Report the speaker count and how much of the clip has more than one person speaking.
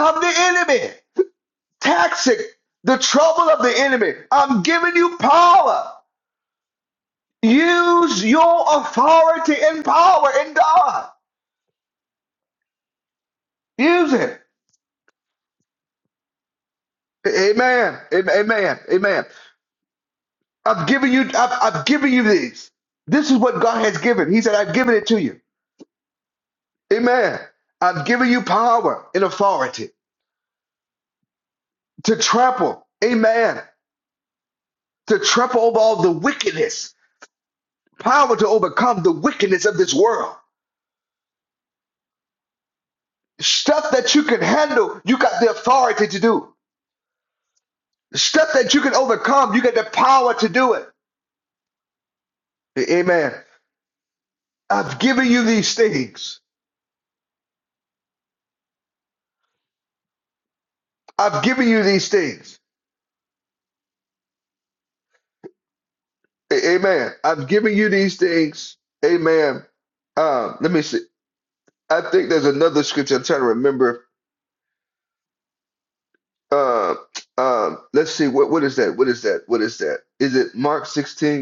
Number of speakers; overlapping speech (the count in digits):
1, no overlap